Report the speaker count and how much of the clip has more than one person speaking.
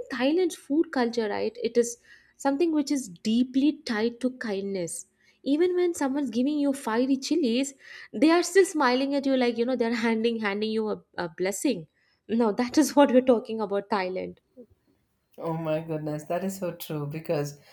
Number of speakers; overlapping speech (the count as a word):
two, no overlap